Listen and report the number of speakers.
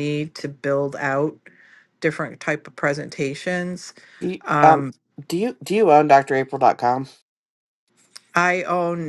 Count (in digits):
2